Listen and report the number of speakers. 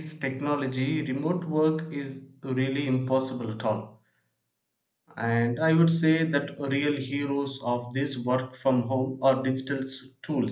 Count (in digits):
1